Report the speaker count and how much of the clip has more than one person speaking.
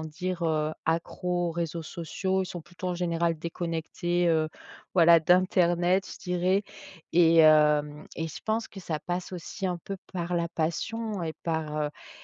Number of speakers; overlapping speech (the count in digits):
1, no overlap